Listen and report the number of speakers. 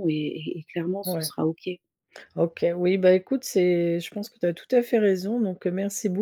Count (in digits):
2